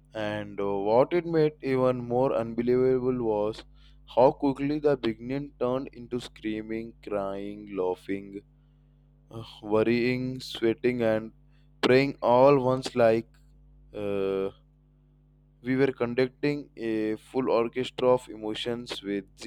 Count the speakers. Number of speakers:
1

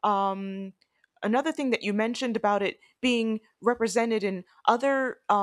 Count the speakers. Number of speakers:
1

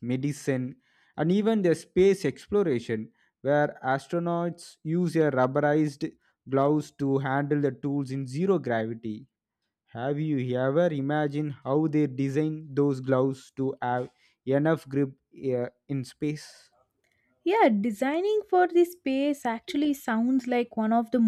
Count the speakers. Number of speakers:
2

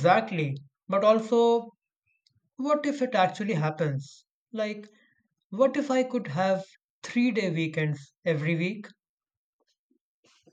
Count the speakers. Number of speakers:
1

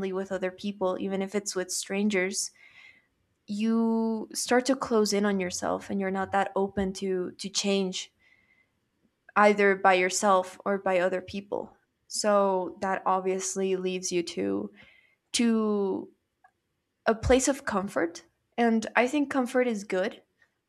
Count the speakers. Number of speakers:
1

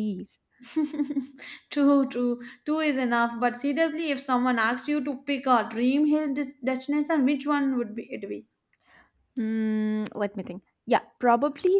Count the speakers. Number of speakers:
2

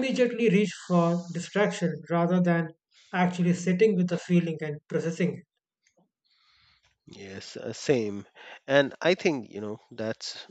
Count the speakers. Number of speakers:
2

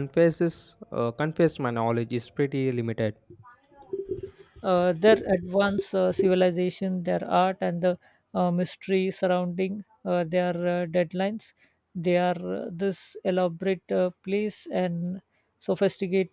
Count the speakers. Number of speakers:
2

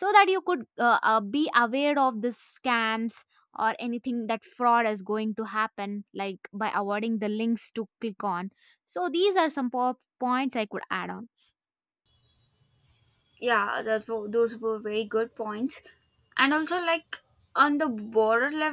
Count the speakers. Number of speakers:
2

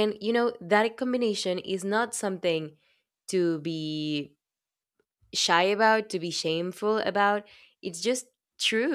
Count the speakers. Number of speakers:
1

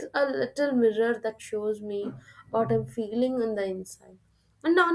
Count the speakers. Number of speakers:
1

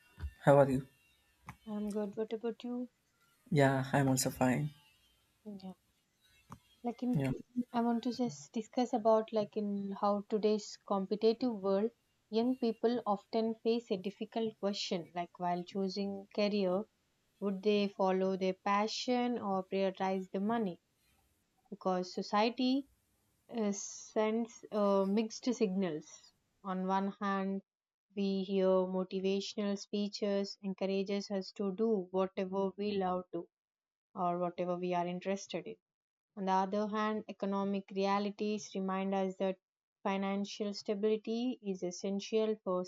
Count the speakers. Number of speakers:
2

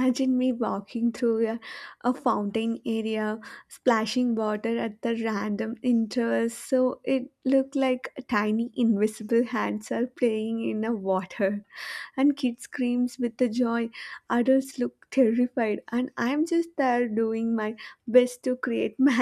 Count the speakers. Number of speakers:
1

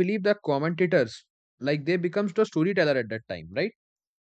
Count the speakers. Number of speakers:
1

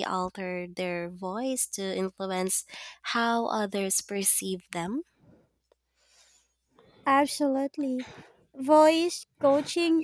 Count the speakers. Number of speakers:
2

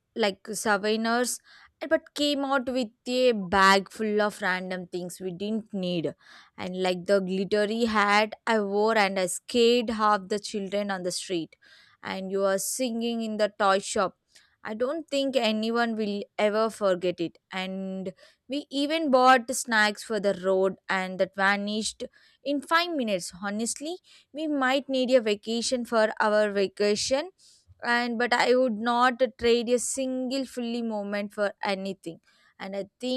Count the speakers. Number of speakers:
1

